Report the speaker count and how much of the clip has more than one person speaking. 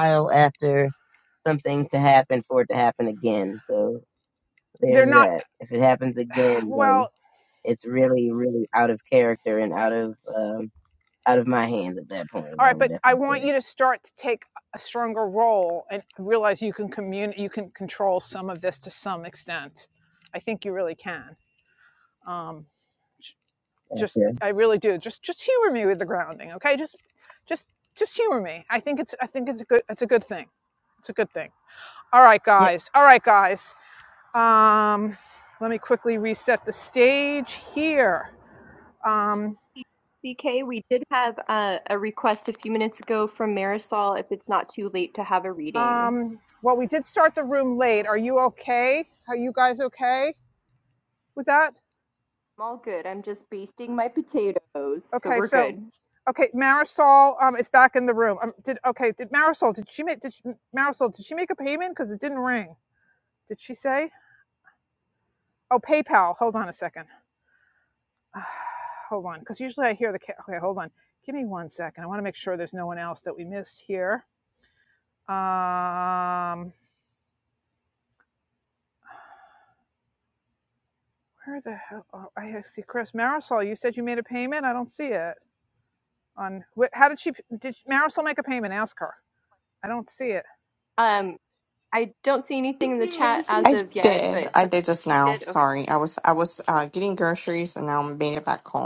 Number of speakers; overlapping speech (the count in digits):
4, about 4%